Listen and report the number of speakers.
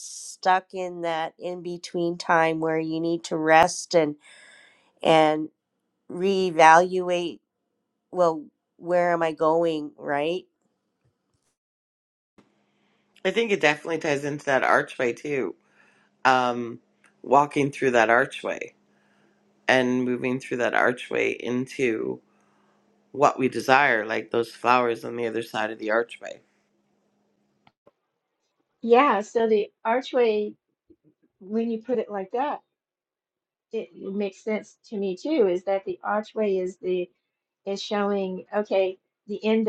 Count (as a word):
three